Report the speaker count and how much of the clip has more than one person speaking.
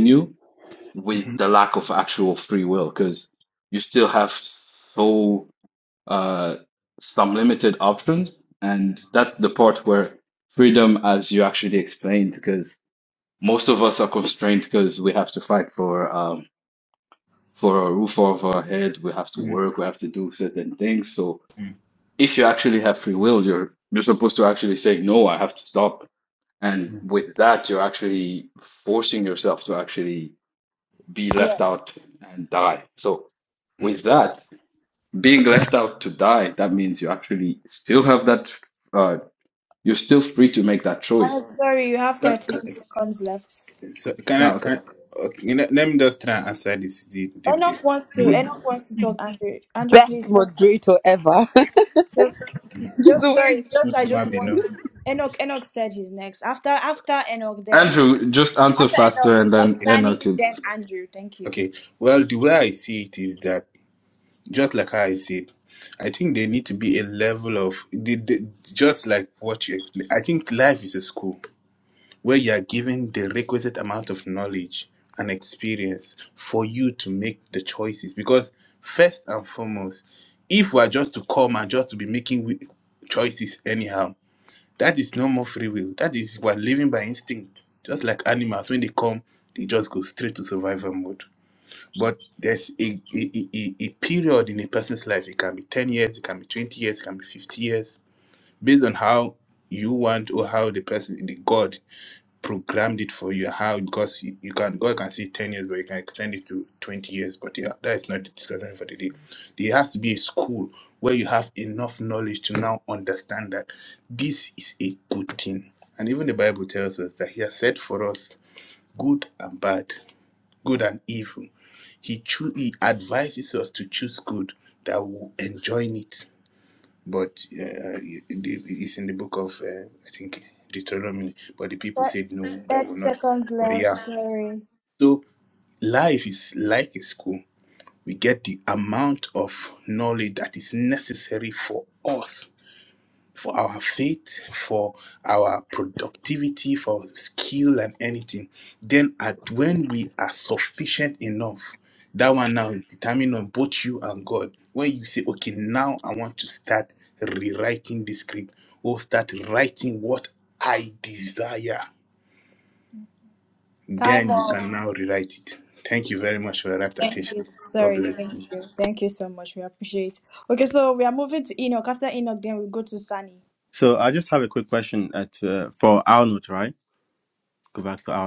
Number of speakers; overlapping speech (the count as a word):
five, about 6%